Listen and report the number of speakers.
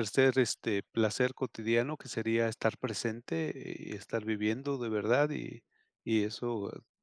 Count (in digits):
1